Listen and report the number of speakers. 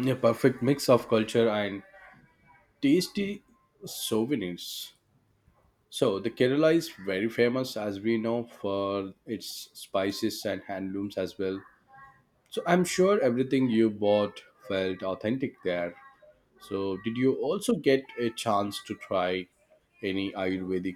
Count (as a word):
one